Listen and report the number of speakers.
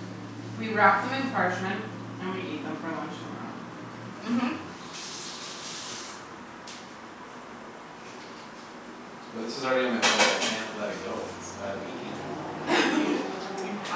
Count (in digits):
3